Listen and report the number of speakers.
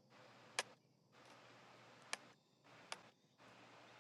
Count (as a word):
zero